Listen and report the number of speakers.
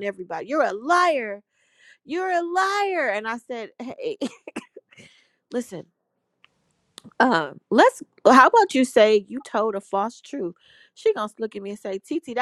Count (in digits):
1